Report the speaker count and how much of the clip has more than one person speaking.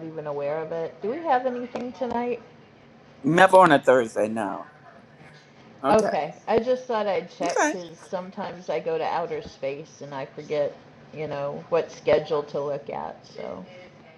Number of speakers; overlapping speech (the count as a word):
two, about 5%